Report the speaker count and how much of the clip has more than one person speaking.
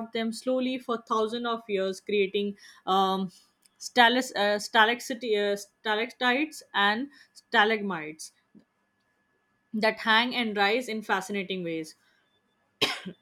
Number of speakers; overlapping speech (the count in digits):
1, no overlap